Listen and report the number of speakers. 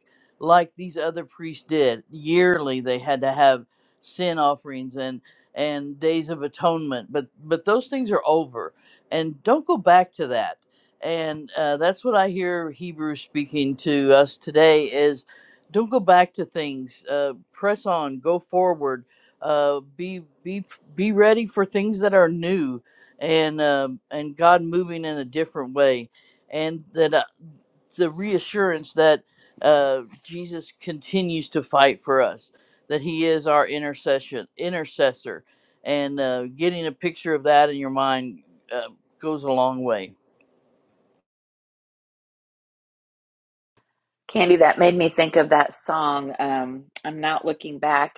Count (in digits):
2